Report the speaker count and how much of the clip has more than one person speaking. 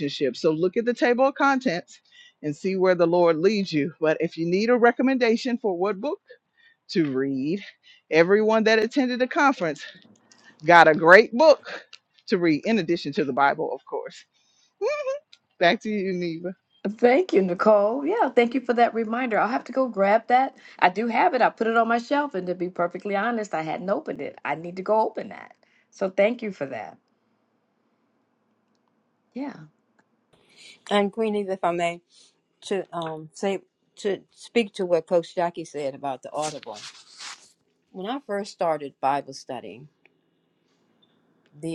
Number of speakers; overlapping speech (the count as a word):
three, no overlap